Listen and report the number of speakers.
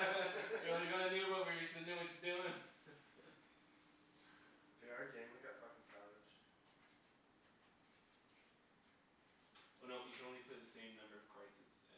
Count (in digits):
2